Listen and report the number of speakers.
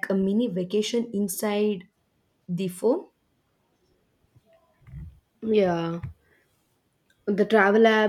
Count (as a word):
two